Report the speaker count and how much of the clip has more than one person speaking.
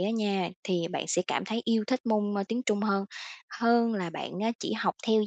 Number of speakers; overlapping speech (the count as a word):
one, no overlap